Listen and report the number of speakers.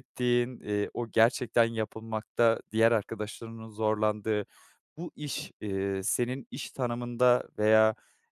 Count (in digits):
1